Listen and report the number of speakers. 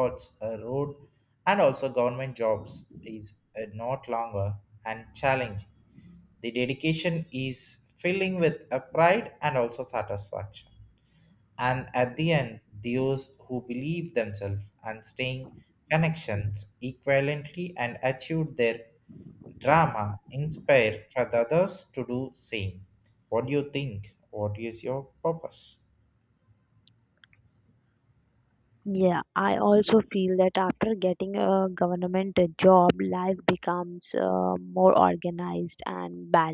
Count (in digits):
2